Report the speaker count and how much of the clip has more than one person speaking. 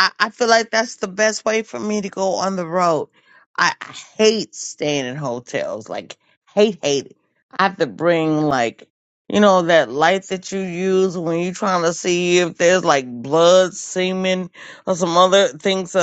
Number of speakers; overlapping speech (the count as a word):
one, no overlap